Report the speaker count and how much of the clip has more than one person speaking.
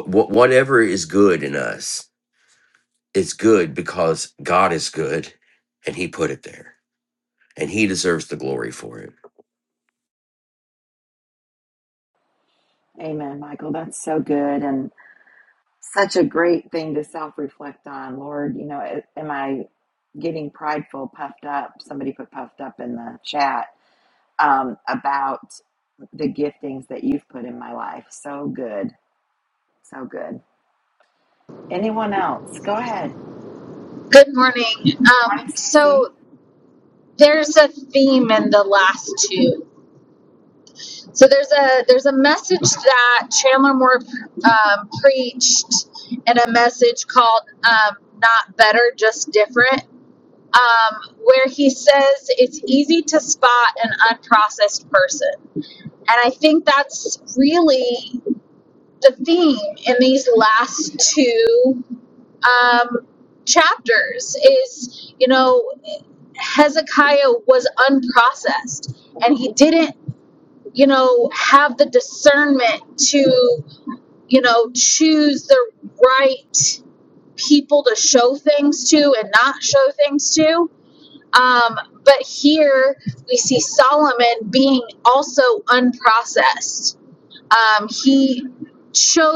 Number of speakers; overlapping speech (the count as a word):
three, about 1%